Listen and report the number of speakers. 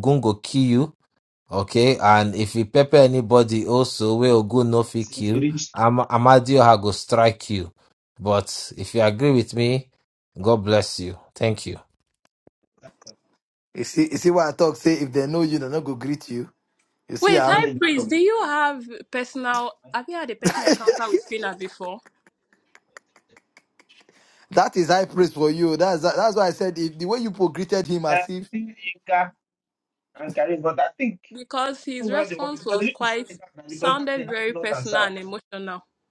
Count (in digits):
4